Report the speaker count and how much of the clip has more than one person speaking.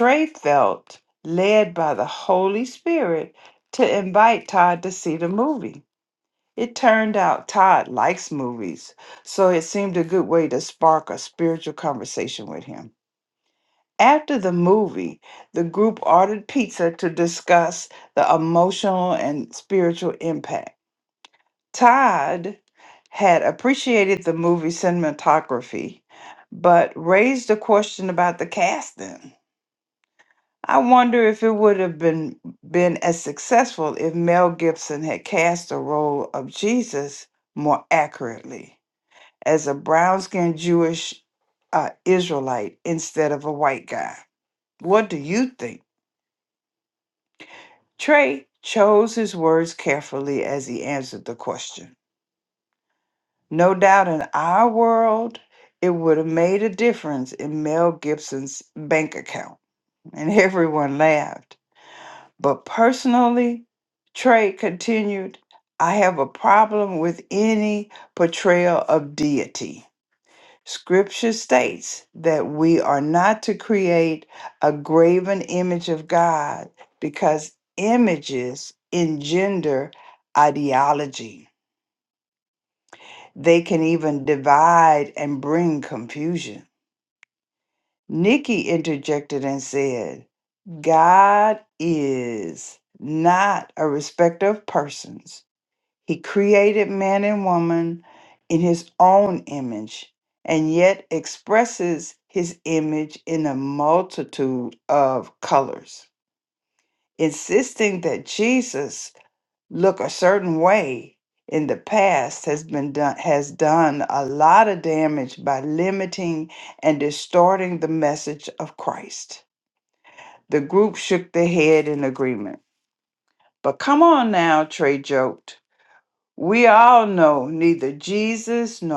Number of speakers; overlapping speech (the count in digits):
1, no overlap